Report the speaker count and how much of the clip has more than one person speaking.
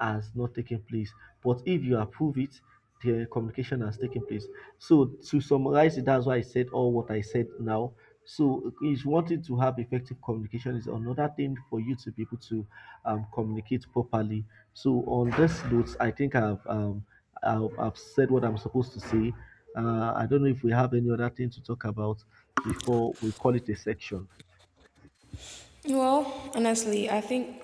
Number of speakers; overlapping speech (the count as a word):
two, no overlap